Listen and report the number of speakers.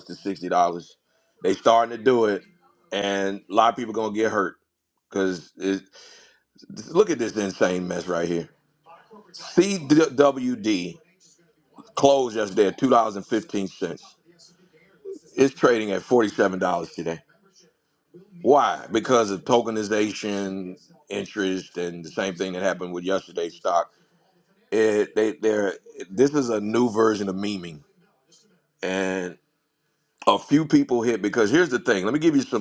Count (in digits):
1